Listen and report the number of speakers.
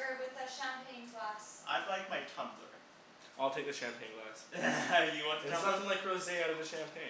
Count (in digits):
3